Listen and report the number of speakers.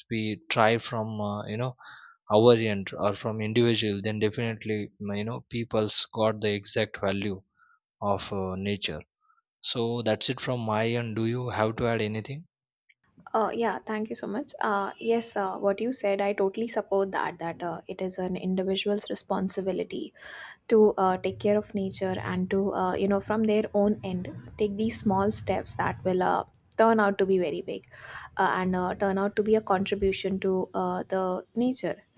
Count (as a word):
two